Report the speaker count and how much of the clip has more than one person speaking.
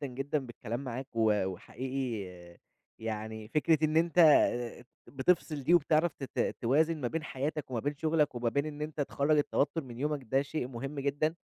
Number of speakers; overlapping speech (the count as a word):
one, no overlap